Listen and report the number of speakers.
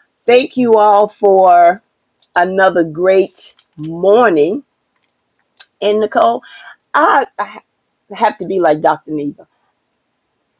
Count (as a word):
one